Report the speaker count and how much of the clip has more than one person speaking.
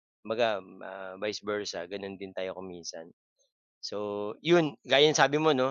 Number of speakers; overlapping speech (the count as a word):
one, no overlap